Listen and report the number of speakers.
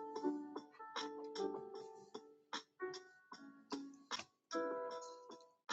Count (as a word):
zero